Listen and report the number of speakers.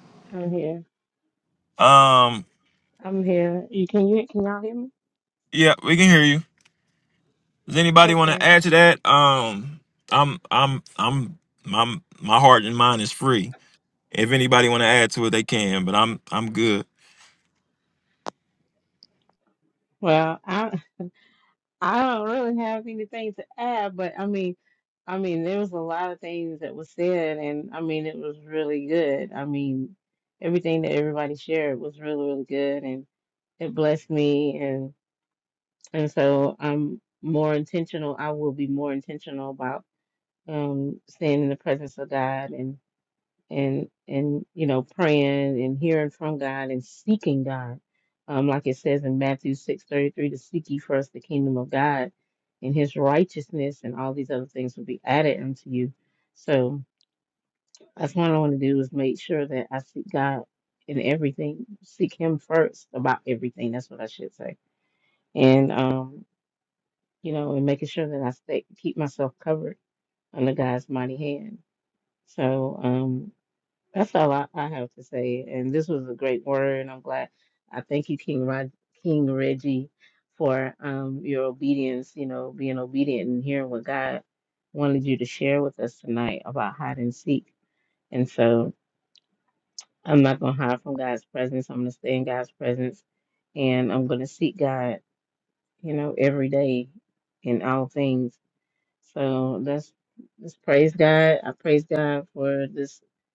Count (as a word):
two